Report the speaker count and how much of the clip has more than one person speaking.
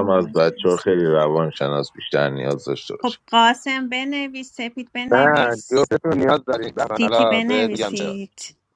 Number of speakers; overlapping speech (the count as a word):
three, about 24%